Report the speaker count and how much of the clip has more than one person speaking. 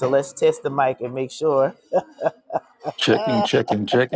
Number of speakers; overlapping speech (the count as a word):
two, about 10%